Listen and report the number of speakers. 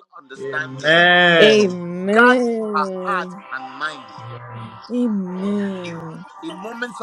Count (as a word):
three